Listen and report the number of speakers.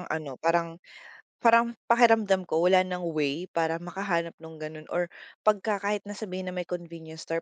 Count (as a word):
one